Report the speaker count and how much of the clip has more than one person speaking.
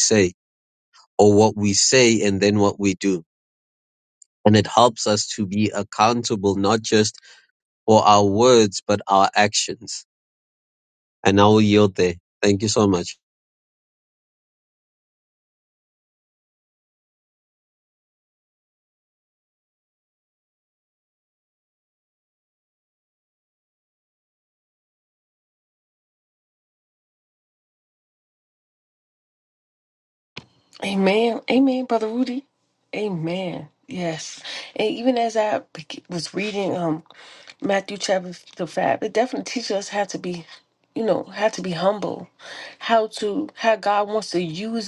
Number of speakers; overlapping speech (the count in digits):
2, no overlap